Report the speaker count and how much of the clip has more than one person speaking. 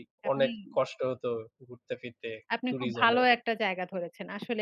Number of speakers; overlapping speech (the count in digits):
2, about 22%